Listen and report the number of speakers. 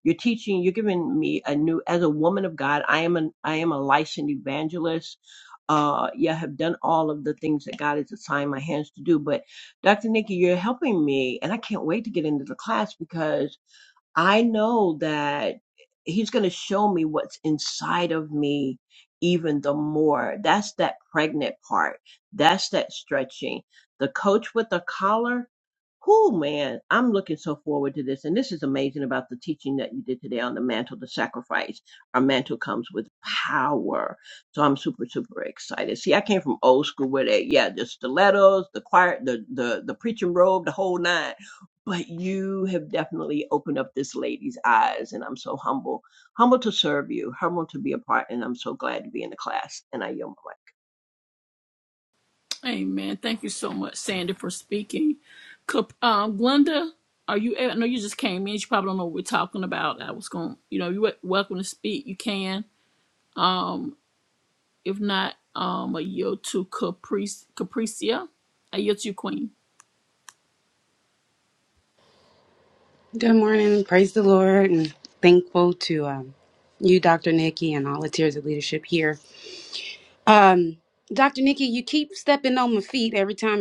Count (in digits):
3